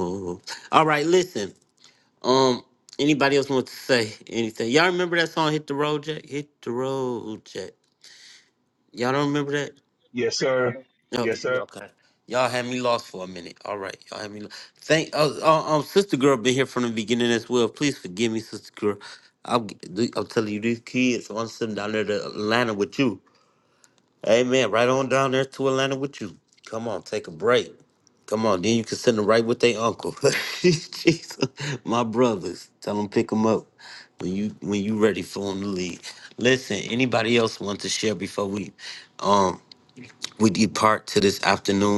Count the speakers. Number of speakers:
2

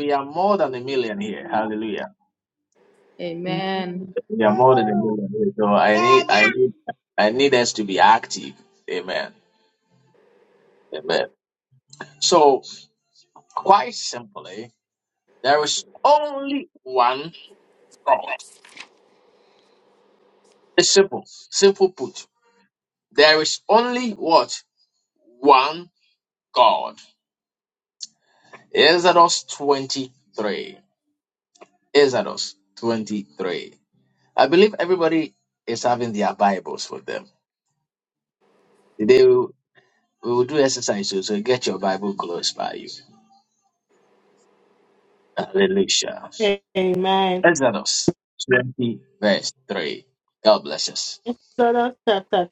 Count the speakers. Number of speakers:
3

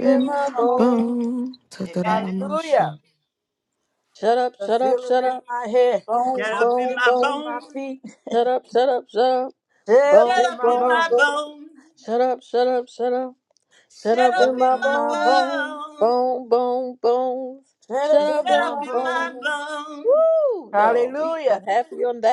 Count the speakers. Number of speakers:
4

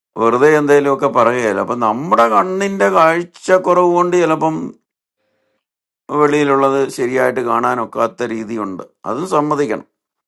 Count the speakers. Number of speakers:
1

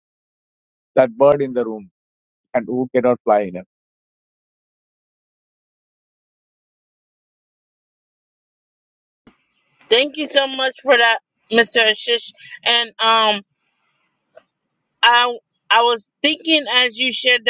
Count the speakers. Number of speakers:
2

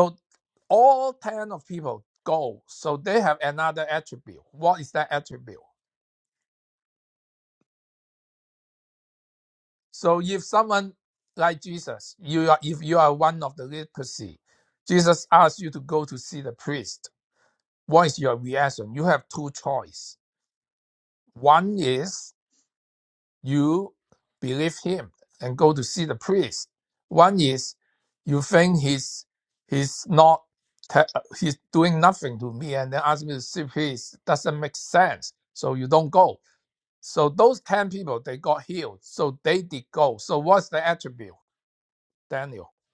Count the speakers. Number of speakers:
1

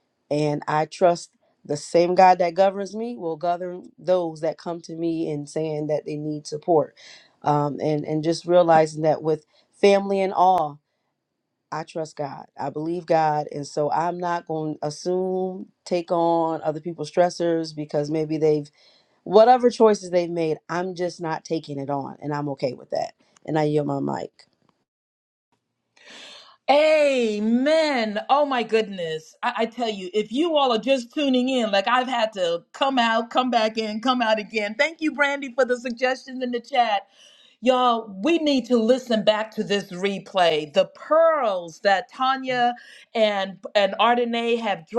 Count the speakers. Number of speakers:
2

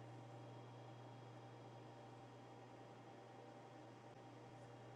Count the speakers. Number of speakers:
0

